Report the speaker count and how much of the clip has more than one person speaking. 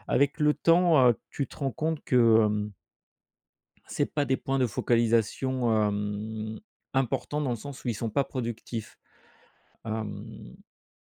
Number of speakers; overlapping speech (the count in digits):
1, no overlap